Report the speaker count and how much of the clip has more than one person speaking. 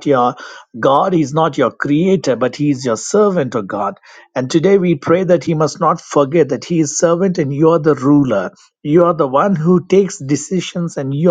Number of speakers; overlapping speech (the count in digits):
1, no overlap